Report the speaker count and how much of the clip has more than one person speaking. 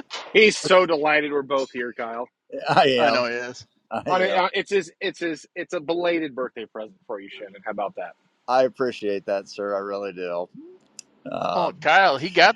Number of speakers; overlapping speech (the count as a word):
three, about 6%